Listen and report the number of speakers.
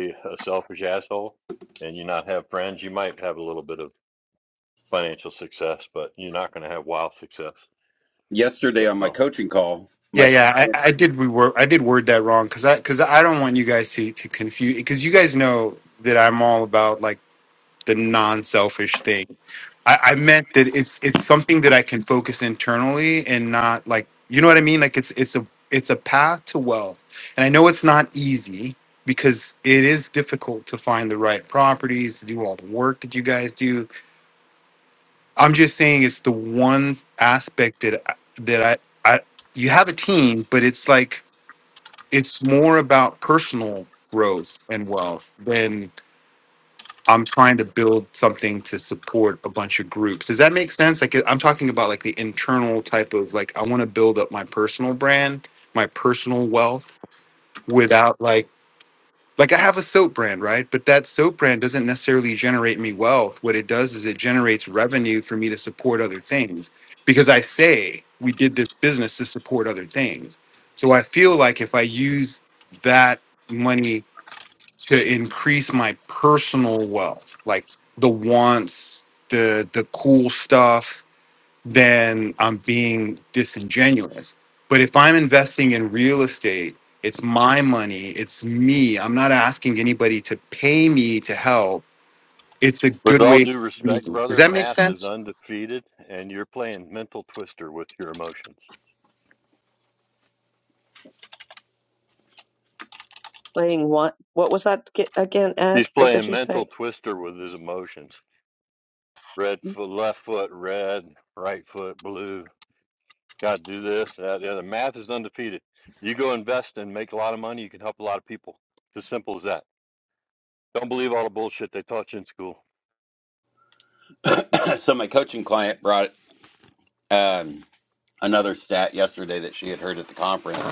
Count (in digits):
4